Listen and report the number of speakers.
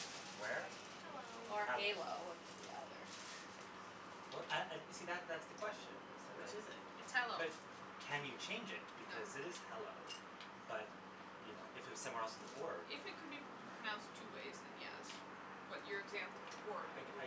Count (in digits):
3